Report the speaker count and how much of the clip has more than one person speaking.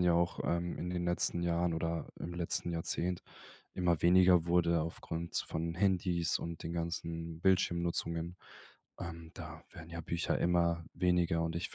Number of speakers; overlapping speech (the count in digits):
1, no overlap